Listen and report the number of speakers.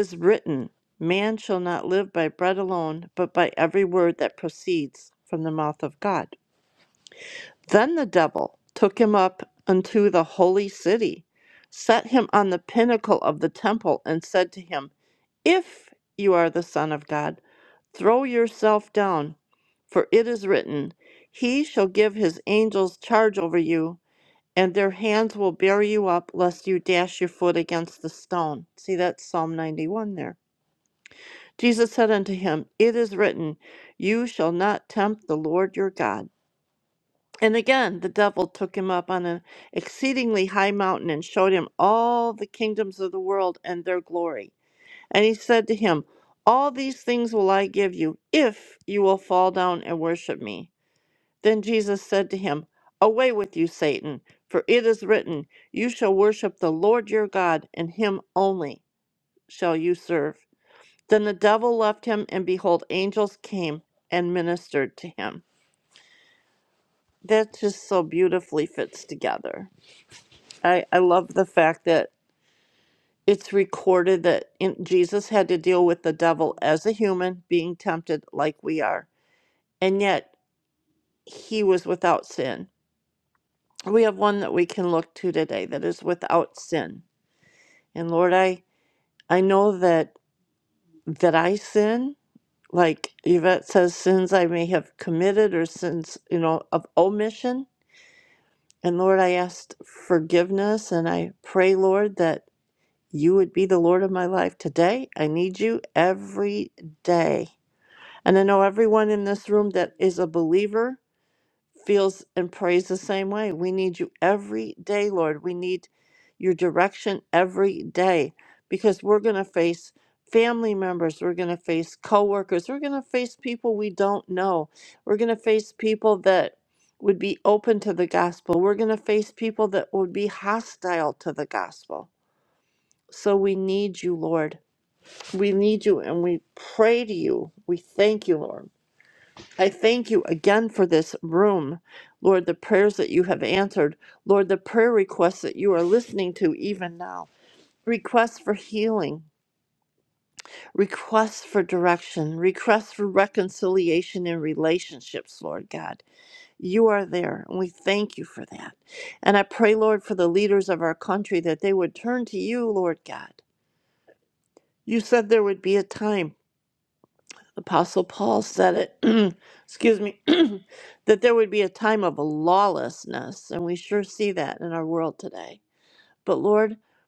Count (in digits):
1